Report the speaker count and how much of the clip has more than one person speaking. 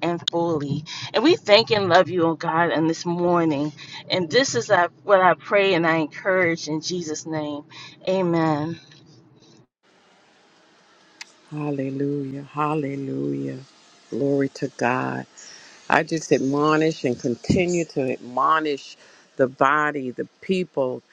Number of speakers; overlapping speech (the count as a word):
two, no overlap